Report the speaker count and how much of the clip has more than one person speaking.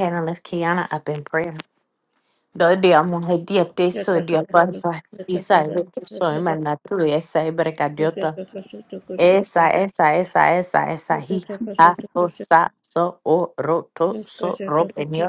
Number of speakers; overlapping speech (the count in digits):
1, no overlap